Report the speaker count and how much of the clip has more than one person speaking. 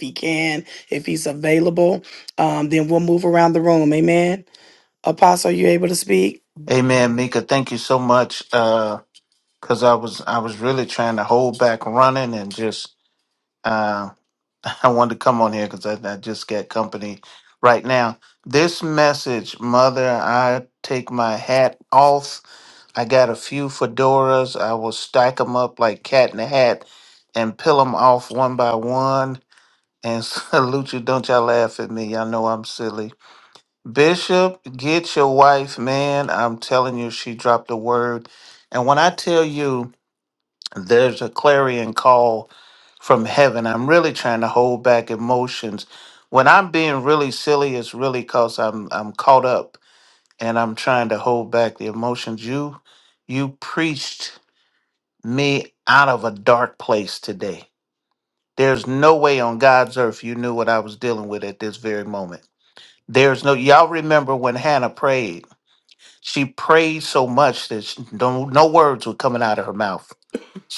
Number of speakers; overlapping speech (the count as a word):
two, no overlap